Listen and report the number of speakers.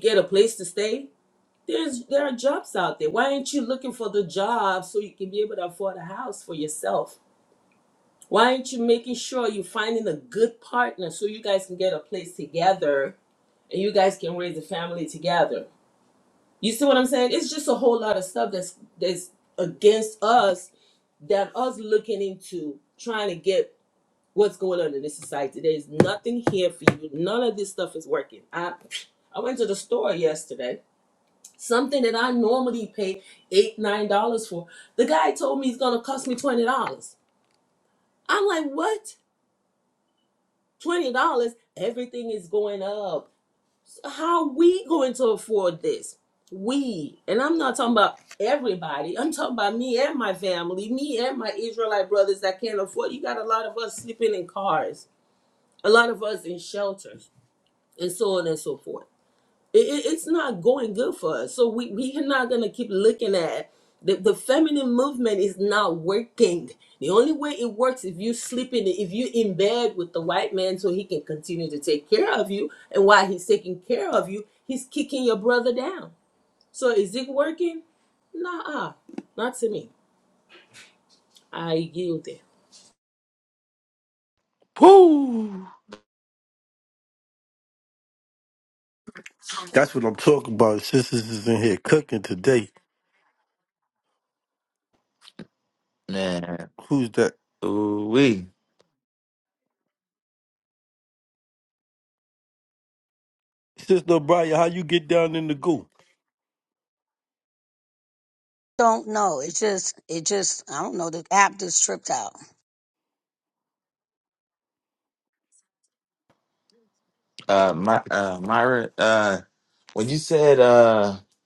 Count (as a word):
four